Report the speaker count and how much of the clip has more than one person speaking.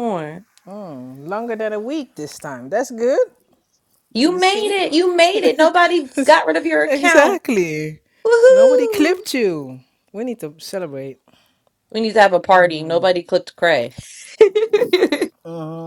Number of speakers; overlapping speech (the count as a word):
two, about 11%